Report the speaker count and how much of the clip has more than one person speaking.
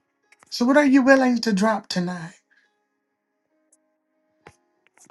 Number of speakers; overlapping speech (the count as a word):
one, no overlap